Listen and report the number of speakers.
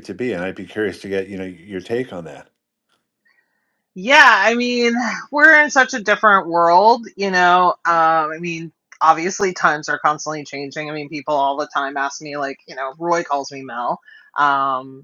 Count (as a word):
two